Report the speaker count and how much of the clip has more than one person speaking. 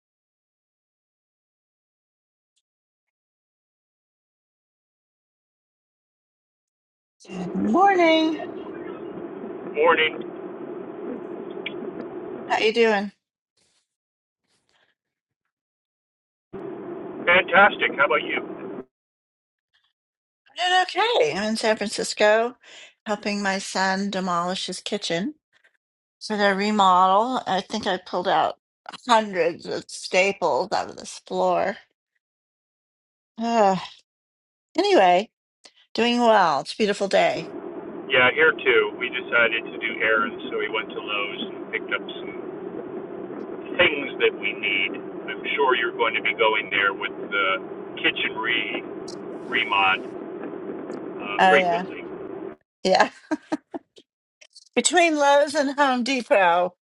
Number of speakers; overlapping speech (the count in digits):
2, about 1%